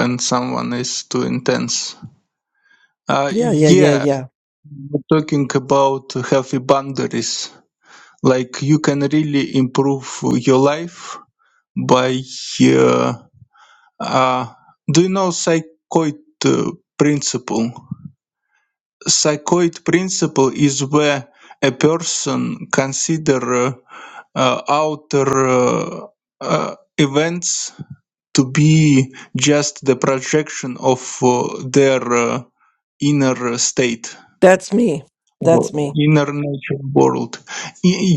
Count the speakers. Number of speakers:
2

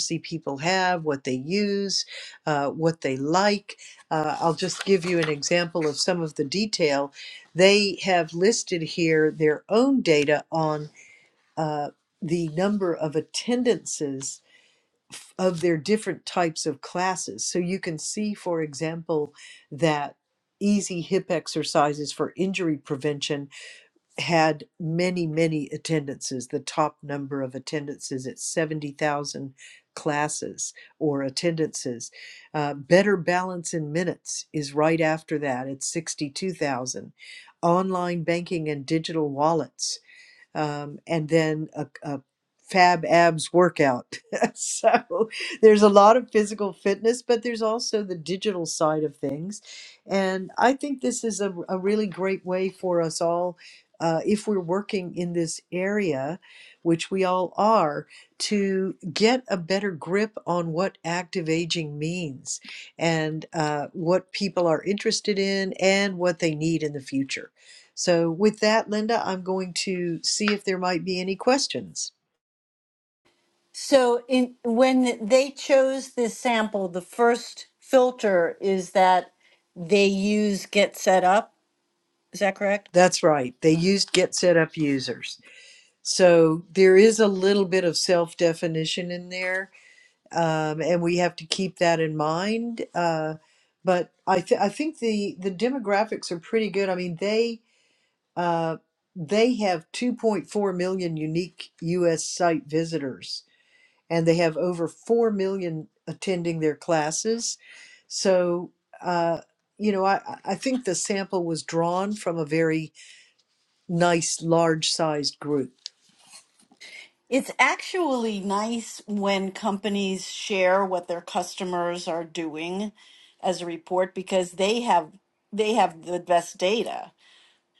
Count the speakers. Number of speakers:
2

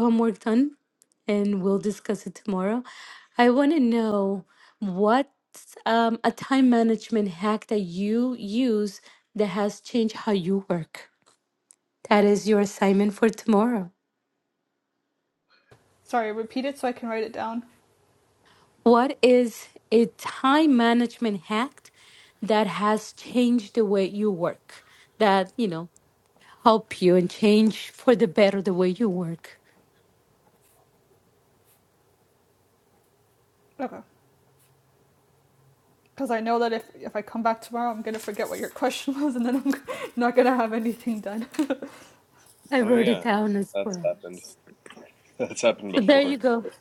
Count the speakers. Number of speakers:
3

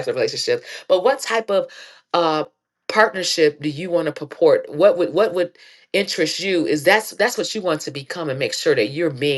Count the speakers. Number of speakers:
1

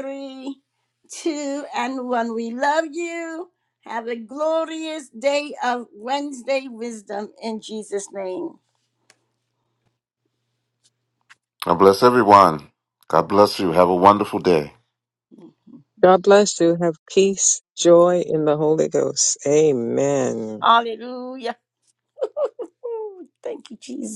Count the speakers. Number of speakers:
3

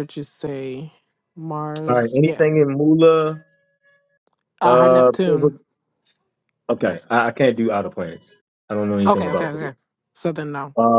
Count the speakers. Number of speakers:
2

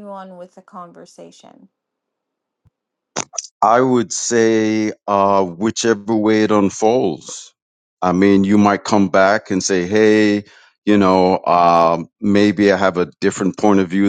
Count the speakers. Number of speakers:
2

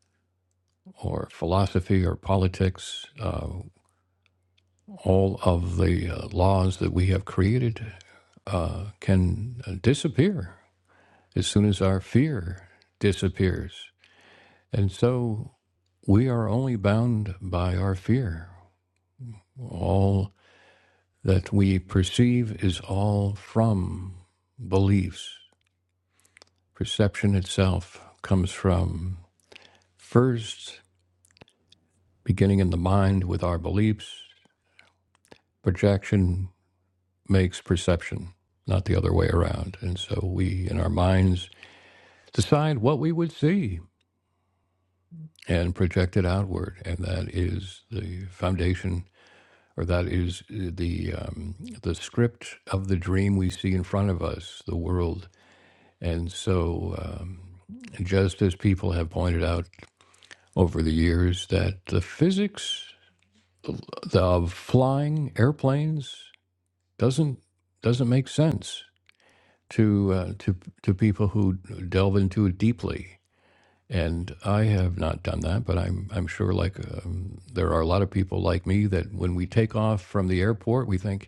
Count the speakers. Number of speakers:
1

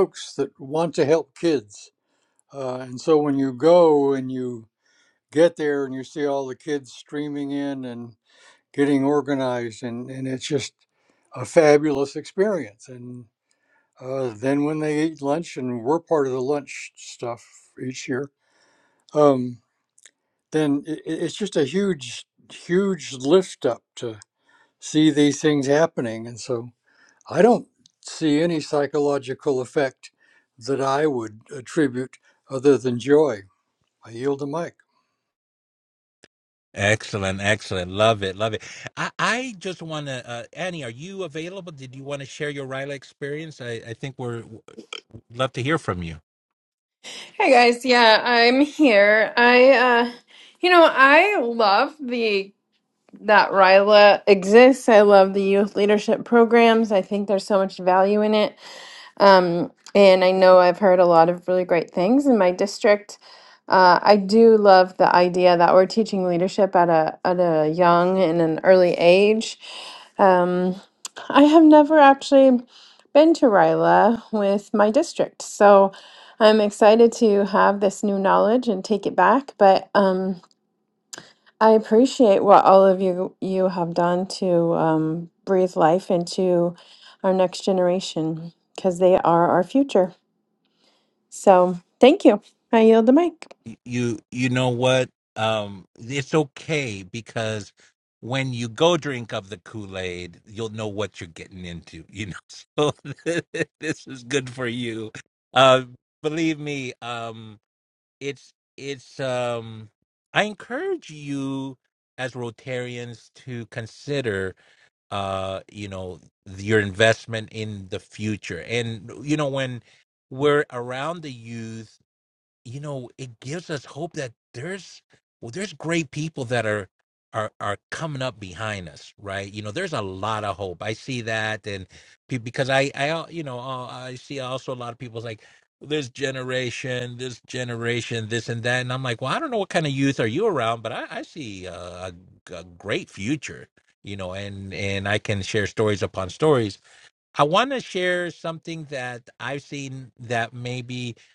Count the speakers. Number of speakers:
3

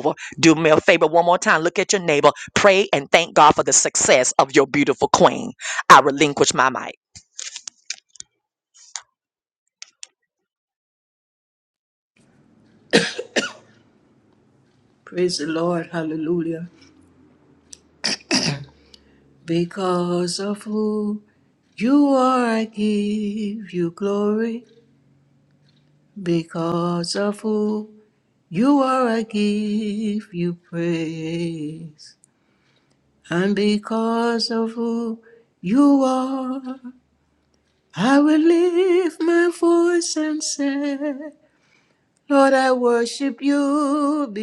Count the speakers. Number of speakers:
2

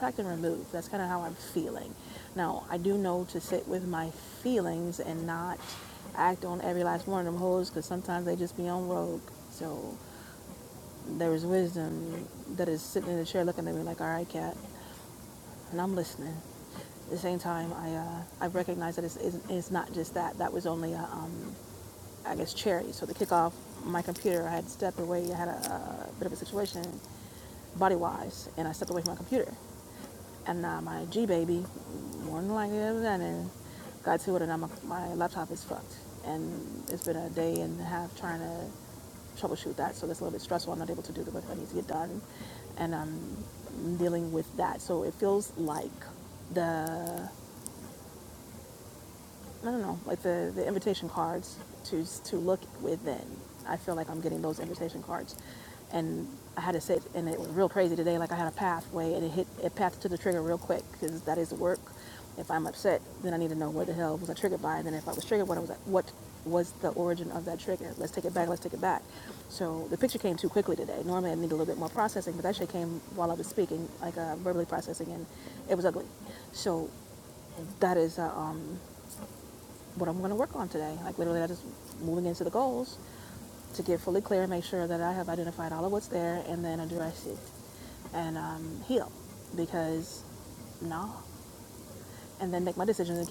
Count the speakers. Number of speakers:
1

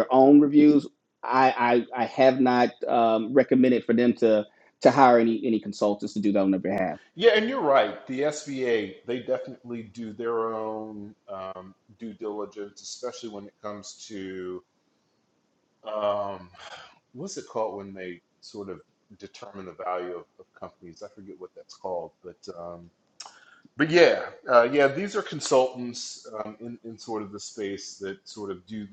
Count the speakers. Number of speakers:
2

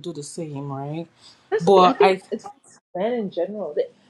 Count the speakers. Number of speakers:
2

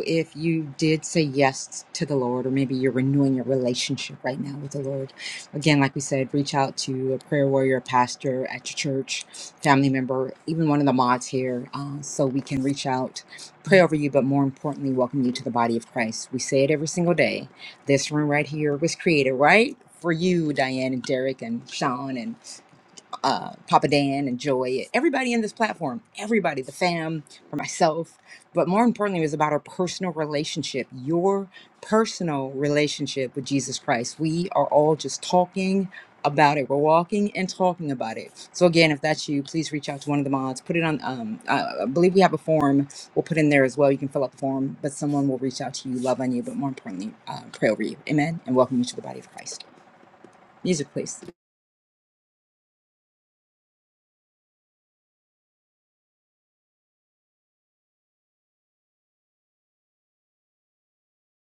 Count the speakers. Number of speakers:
1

